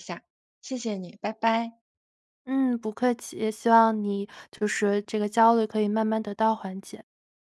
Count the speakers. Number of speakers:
2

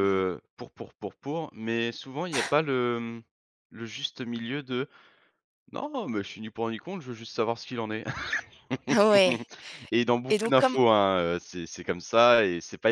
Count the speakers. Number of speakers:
2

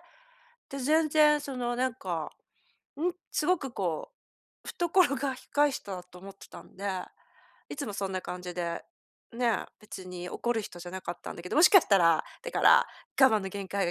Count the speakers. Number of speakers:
1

